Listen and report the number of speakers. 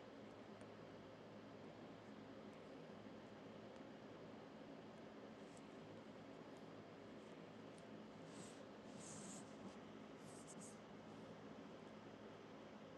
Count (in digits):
0